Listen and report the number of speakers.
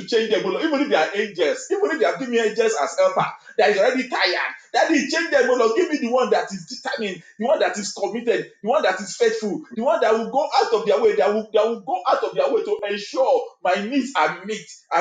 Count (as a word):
one